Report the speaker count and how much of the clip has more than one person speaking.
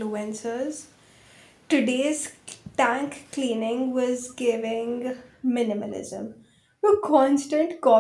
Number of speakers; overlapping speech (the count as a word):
one, no overlap